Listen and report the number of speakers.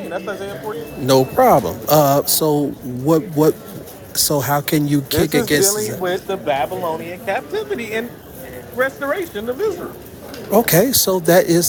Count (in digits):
2